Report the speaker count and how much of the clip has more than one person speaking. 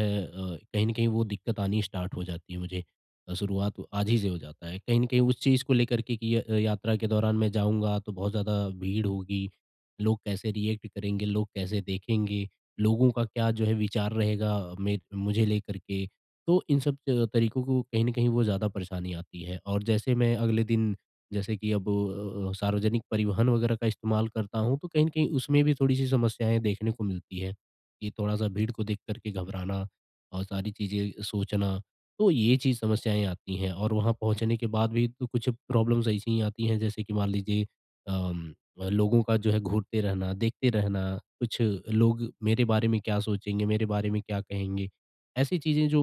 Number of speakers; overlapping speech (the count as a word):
one, no overlap